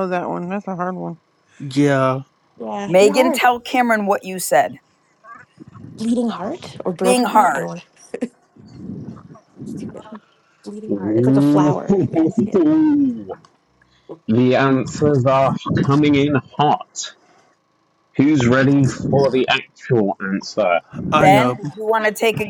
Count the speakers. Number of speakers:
5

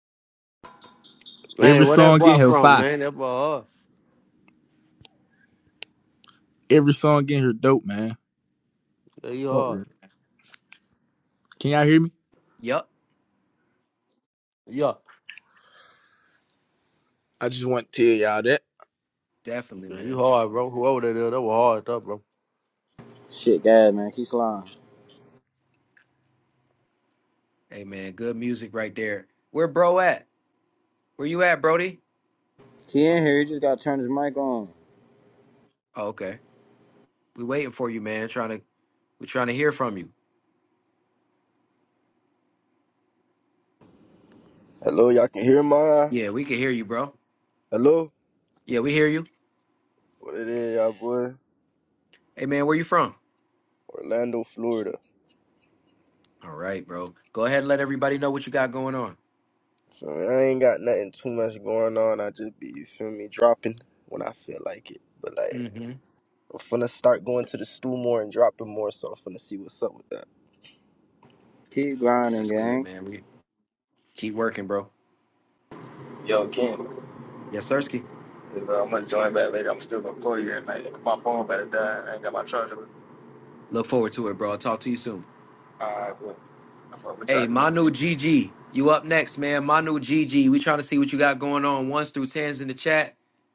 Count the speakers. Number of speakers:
6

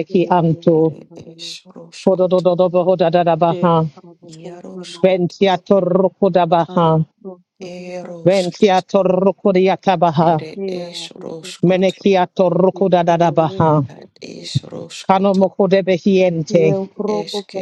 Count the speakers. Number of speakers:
3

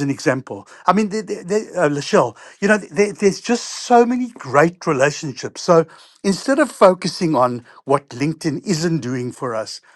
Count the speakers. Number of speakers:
1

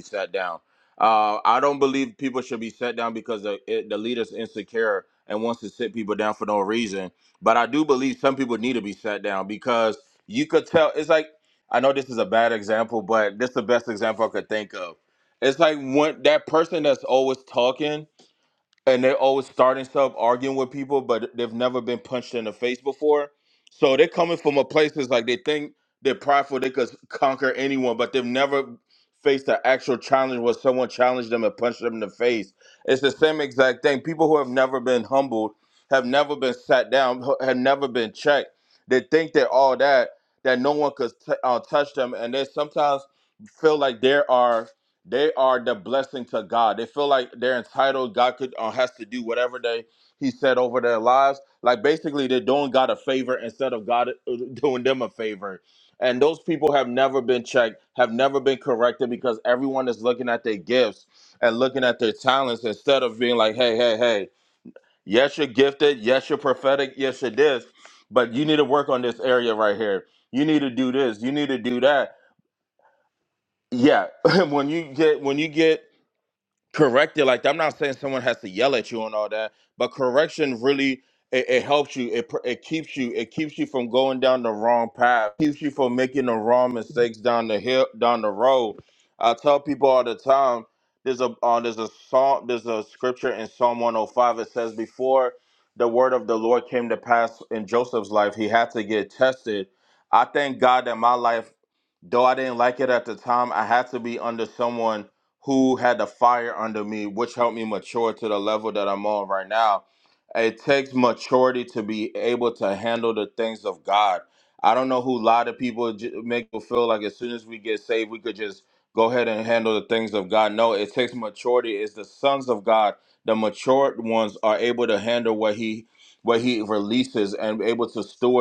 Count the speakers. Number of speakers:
1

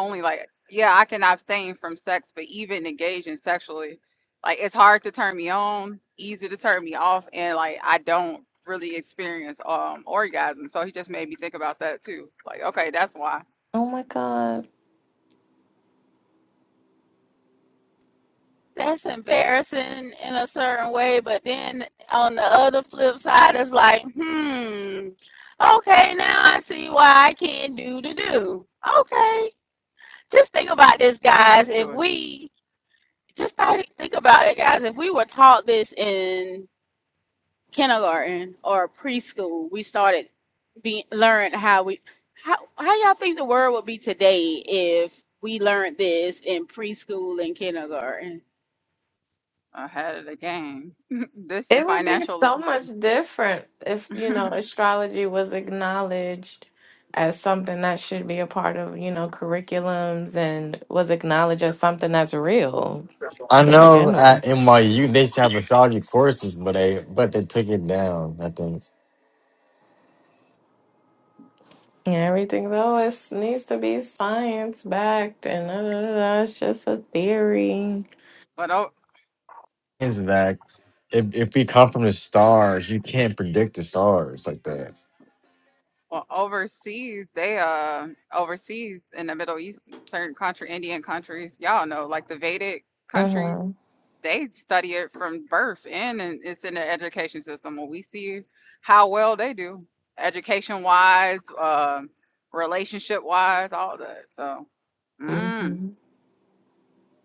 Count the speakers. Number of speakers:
4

